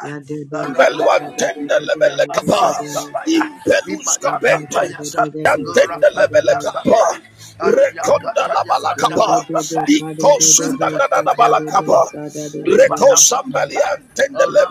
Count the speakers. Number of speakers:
3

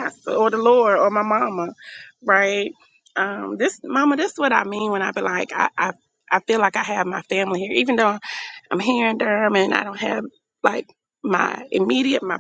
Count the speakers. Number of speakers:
1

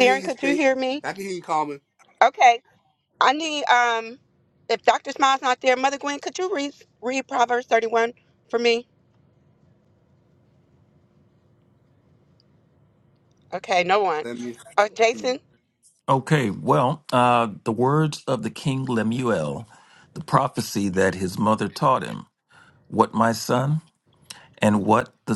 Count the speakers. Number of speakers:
3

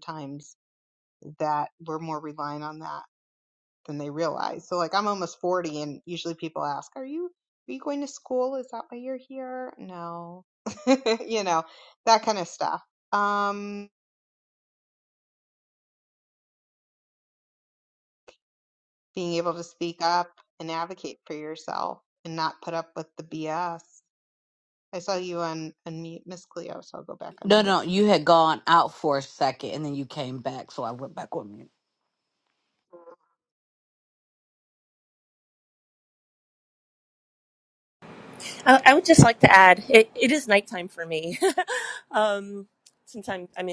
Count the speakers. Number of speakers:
3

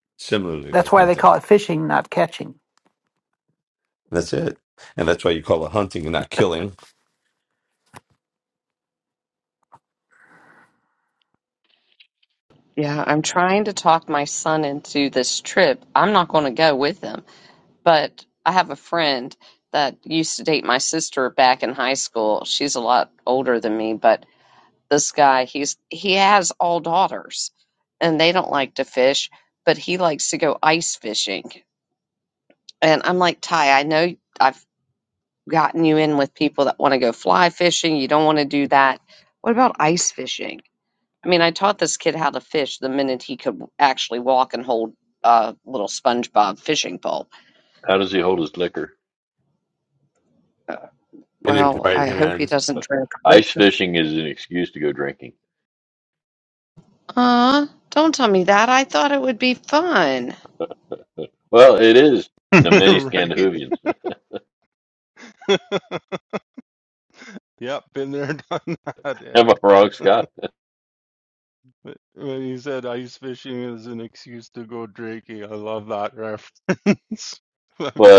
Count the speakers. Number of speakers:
5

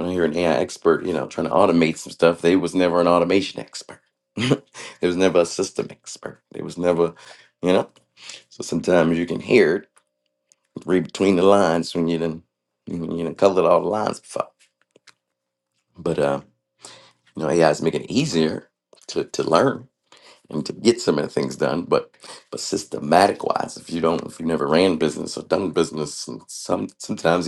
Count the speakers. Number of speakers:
1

